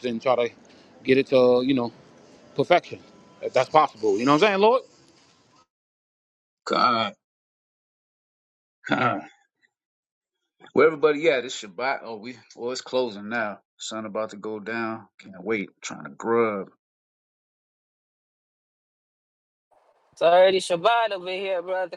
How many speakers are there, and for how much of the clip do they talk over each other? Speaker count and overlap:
3, no overlap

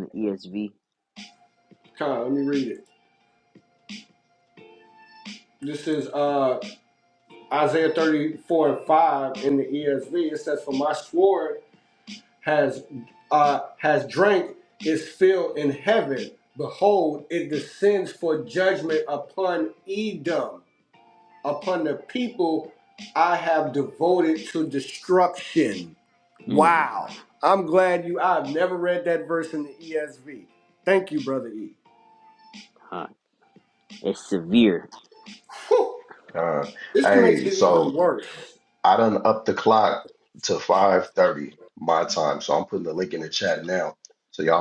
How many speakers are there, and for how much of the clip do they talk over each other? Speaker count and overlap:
3, about 3%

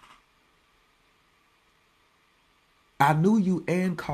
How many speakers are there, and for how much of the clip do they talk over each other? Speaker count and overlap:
1, no overlap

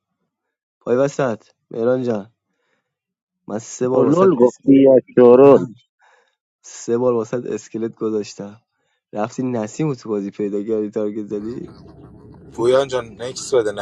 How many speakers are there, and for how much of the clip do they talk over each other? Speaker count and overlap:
3, about 6%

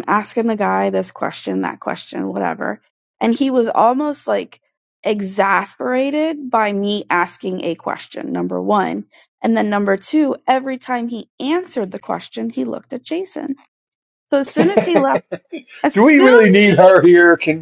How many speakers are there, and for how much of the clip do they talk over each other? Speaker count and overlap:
2, about 2%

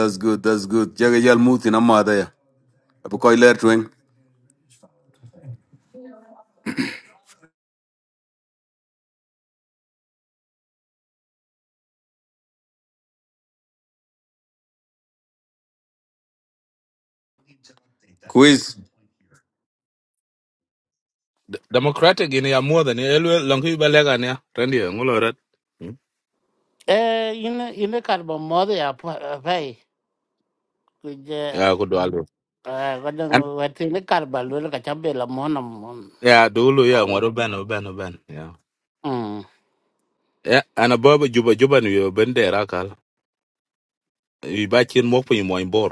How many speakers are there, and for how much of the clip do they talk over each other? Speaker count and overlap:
3, about 1%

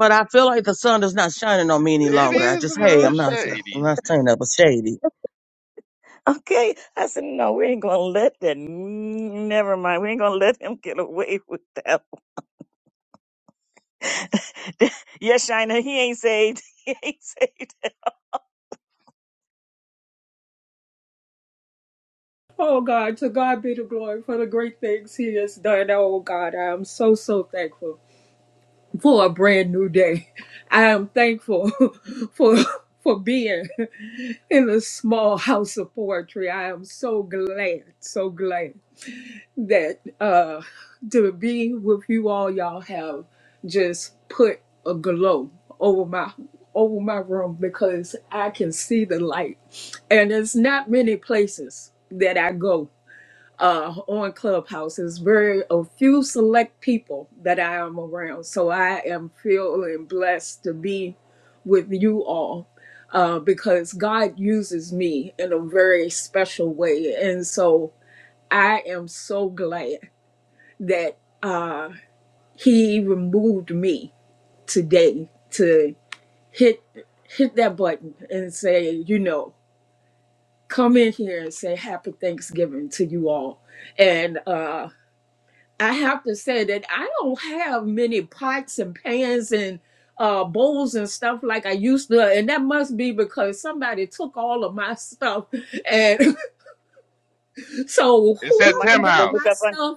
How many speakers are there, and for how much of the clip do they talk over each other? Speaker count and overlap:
4, about 3%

